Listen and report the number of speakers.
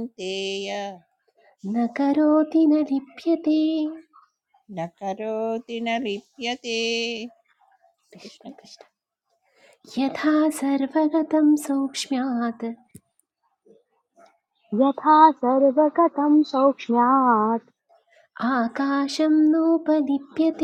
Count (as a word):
three